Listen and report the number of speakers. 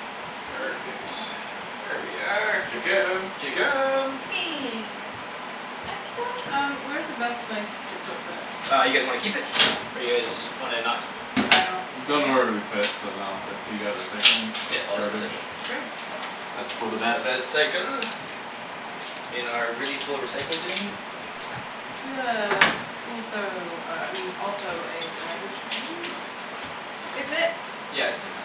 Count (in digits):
4